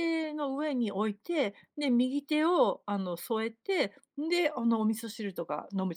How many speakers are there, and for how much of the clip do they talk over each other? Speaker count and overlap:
1, no overlap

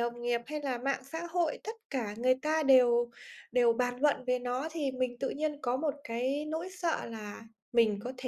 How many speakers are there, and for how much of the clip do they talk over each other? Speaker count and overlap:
1, no overlap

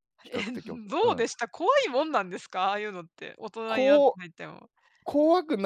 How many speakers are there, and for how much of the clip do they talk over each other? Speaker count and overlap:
2, about 17%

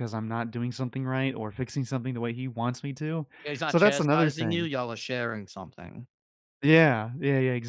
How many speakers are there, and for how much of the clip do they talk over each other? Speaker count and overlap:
2, about 13%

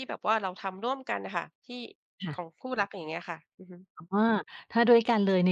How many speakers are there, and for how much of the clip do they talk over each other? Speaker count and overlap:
2, about 1%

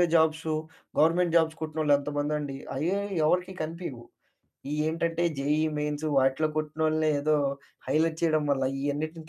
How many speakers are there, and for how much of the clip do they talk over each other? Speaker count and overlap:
1, no overlap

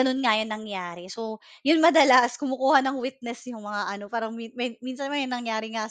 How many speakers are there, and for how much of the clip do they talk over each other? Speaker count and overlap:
1, no overlap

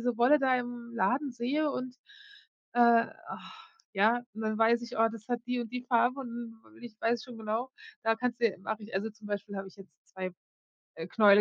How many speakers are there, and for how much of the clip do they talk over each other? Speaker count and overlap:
1, no overlap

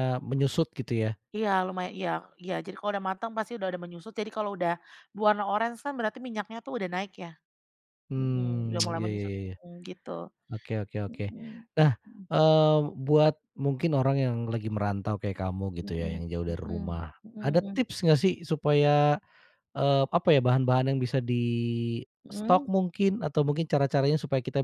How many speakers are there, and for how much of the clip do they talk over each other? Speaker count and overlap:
2, about 9%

